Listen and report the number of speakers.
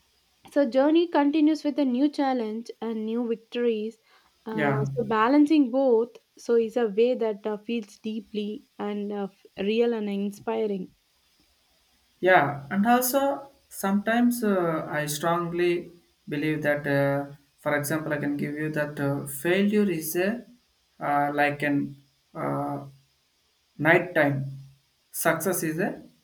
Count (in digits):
2